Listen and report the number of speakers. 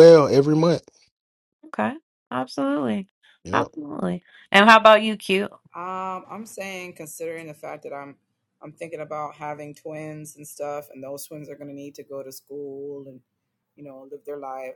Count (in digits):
3